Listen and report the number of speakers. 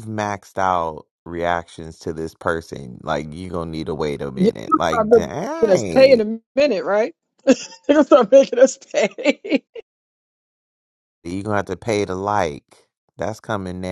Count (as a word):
two